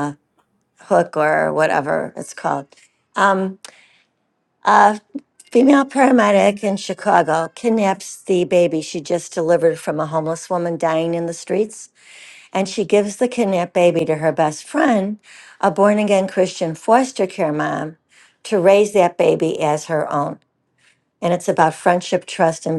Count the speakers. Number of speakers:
1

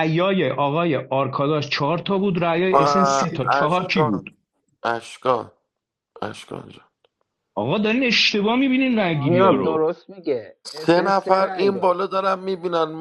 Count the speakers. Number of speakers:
3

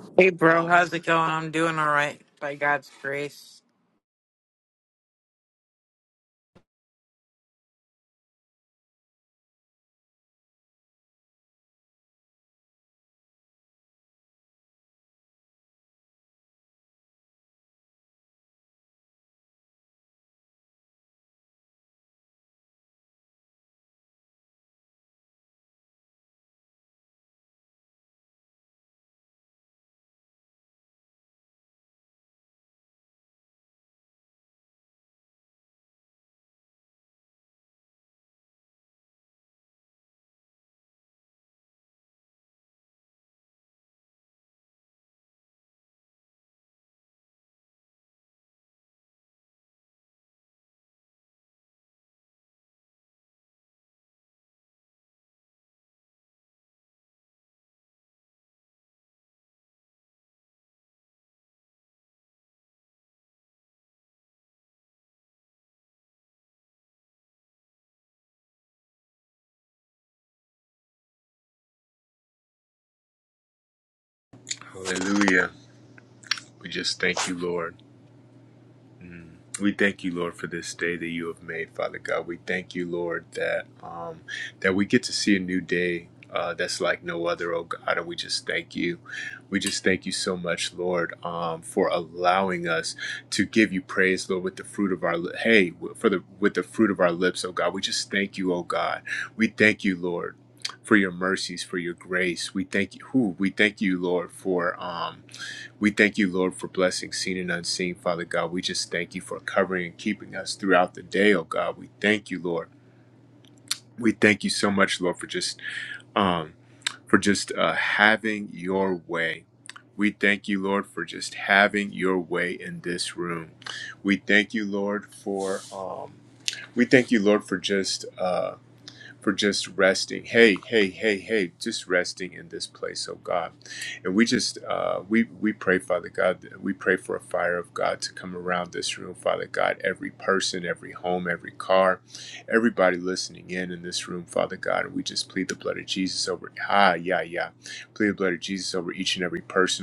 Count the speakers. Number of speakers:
2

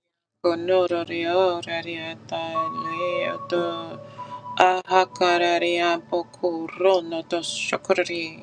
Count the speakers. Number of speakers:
1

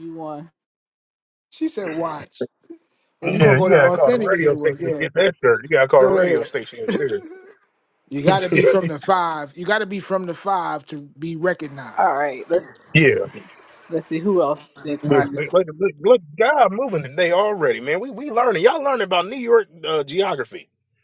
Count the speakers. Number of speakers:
3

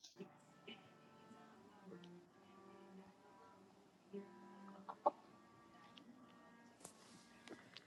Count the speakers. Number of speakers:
0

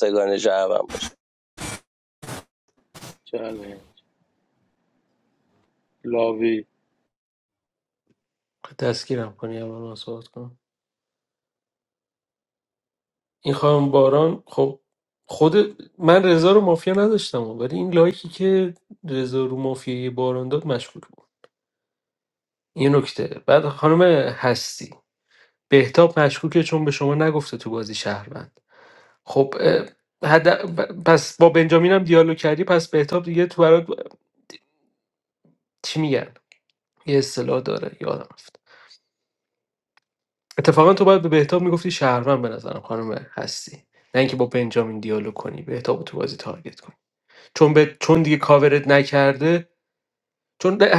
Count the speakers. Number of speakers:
3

